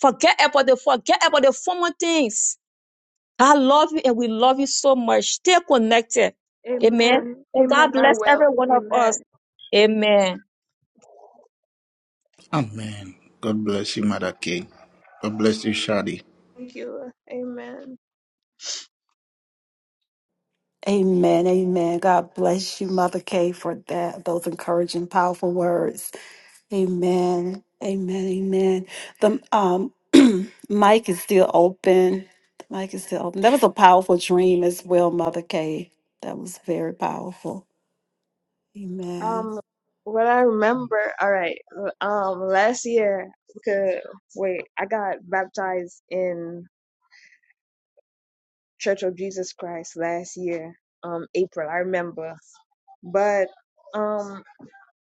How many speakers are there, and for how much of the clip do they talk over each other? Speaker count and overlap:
4, about 5%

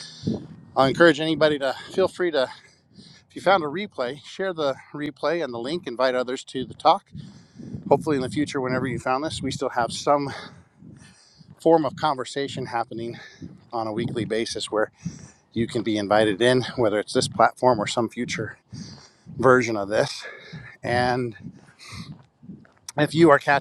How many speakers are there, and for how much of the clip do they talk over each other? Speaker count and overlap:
1, no overlap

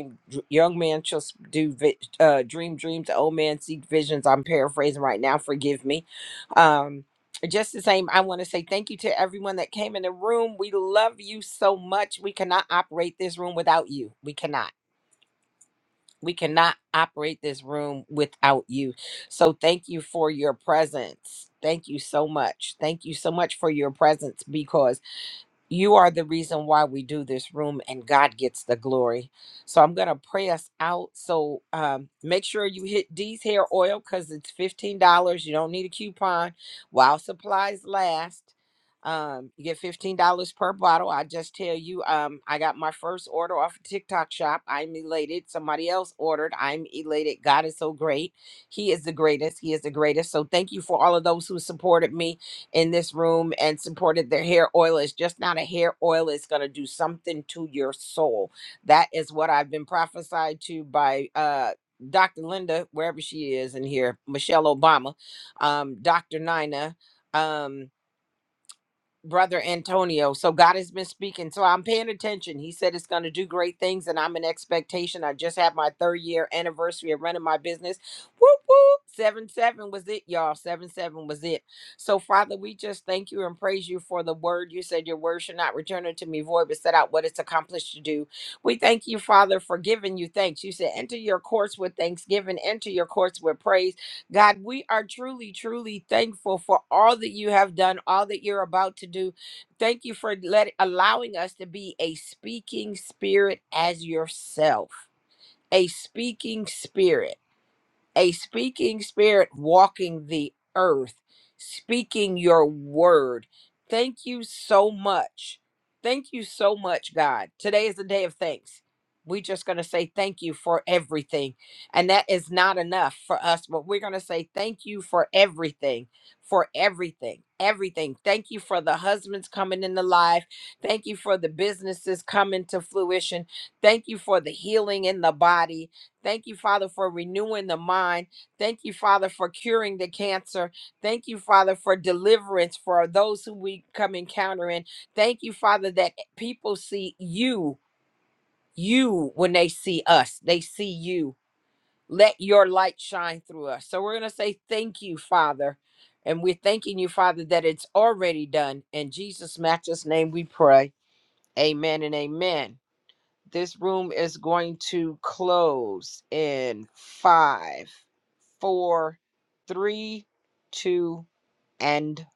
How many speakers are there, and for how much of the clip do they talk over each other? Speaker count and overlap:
1, no overlap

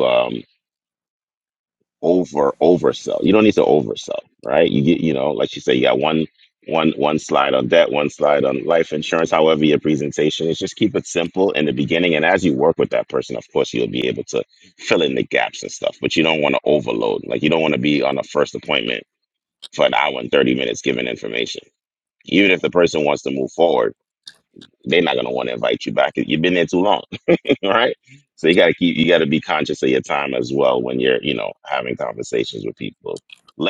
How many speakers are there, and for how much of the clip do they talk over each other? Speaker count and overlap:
1, no overlap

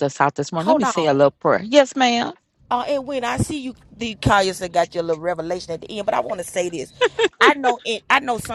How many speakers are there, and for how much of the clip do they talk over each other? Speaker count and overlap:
2, about 7%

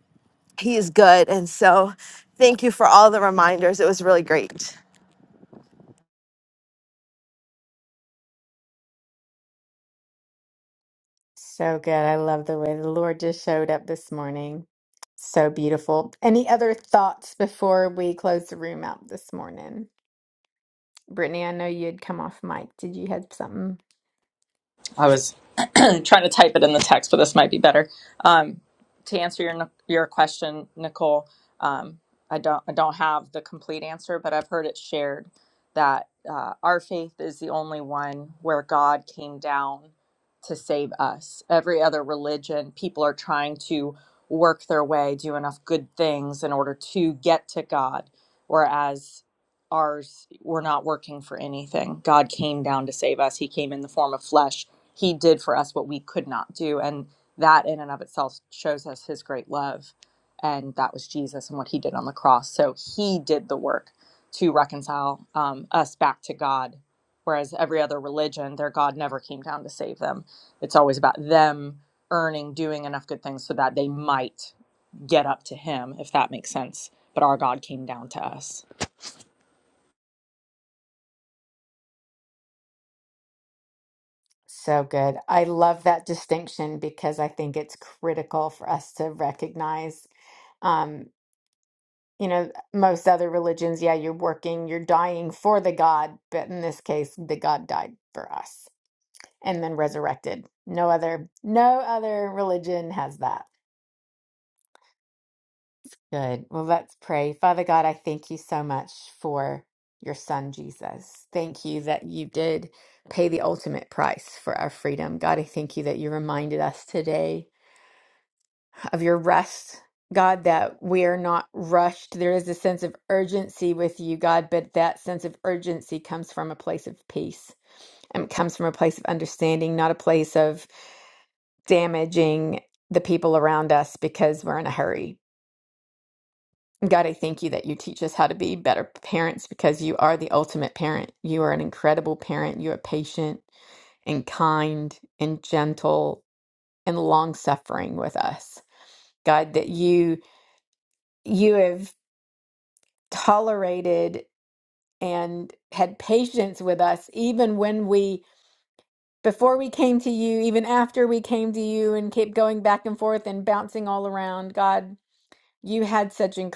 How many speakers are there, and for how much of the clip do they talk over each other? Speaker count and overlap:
3, no overlap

